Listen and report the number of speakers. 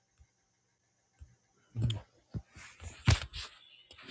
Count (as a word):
zero